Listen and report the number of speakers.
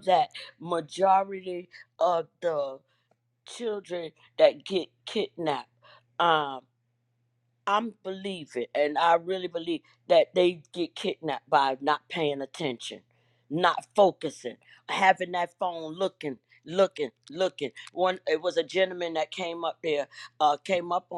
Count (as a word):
one